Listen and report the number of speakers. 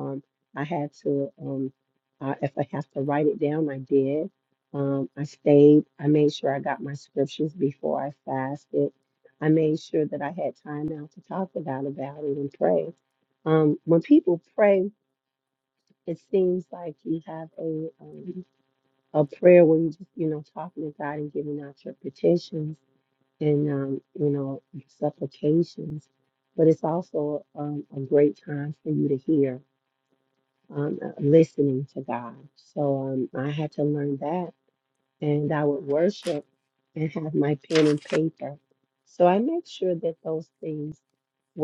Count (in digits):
1